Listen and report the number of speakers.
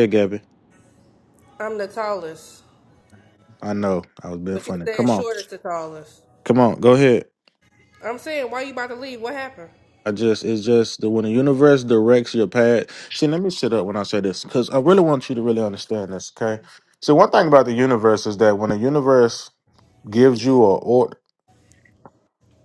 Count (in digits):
2